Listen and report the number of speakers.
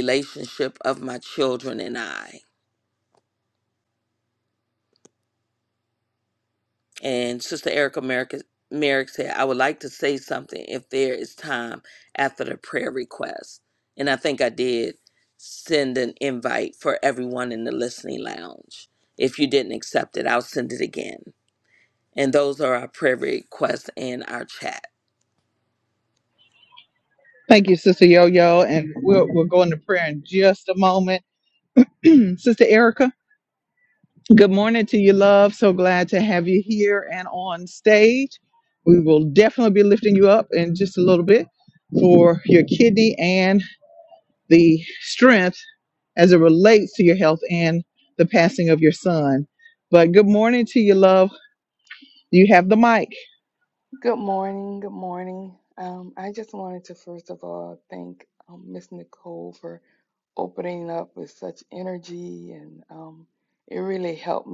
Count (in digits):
3